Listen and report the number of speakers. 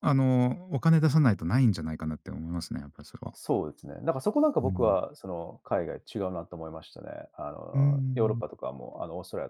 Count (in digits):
2